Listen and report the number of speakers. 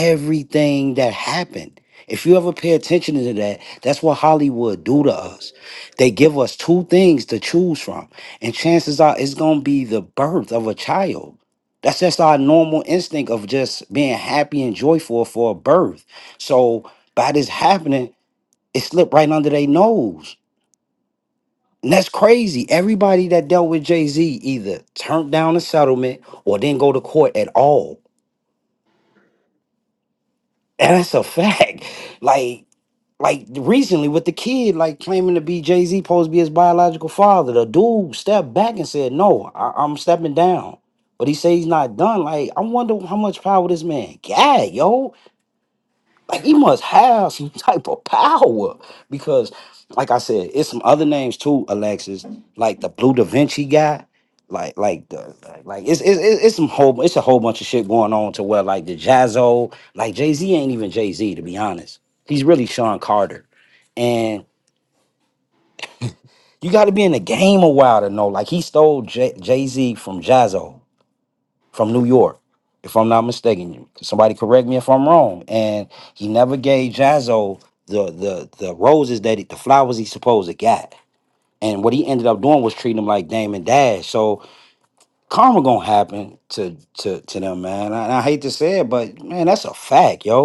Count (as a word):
one